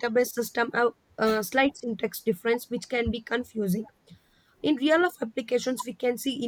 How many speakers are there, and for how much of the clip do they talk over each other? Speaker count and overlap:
1, no overlap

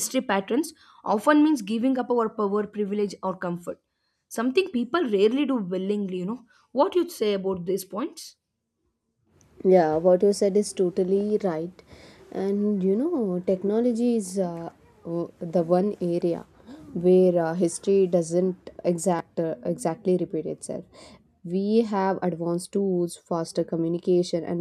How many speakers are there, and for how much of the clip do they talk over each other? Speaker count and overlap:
2, no overlap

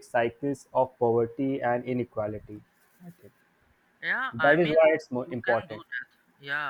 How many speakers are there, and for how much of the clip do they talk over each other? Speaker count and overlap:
2, about 15%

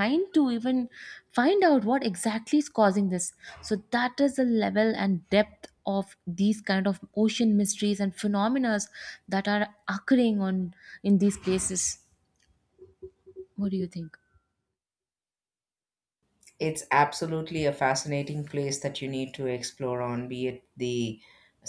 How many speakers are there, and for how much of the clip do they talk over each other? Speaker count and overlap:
2, no overlap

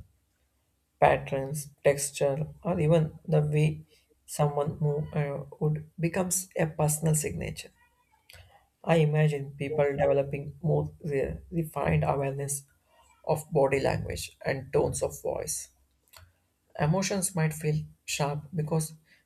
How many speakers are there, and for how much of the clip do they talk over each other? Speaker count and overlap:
1, no overlap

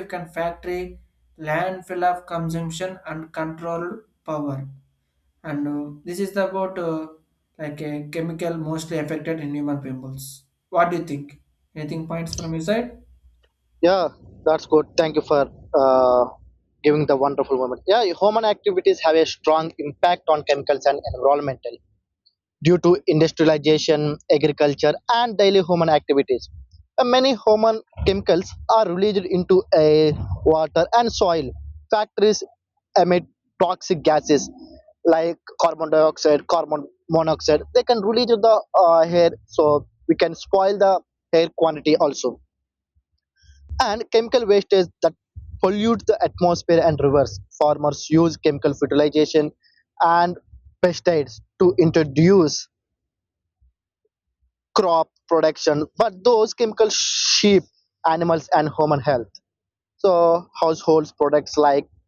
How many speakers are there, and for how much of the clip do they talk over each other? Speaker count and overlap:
2, no overlap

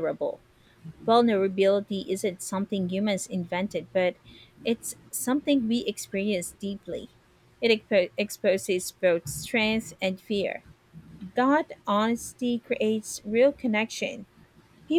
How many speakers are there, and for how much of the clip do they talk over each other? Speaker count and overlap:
1, no overlap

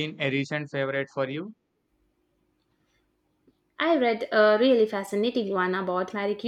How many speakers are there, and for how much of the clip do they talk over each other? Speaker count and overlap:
2, no overlap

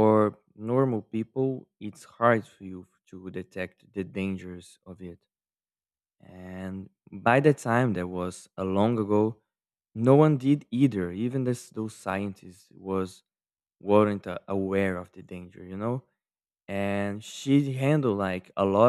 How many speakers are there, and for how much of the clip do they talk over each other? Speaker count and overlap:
1, no overlap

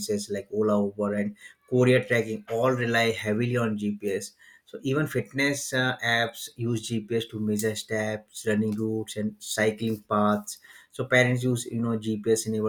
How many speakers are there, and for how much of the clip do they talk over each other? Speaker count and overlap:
1, no overlap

